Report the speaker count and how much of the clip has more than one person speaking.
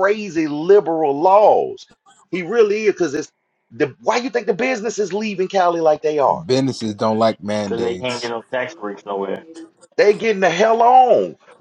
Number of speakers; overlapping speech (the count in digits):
3, about 5%